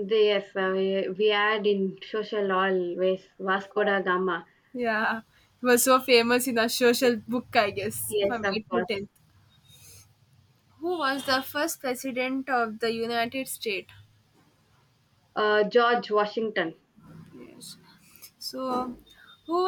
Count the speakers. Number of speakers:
2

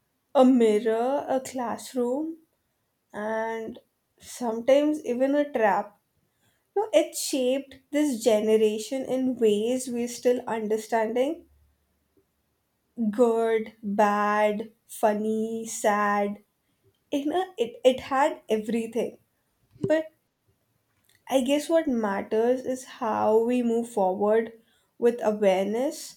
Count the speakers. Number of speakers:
1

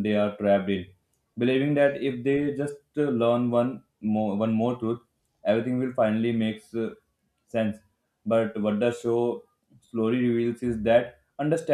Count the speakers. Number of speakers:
1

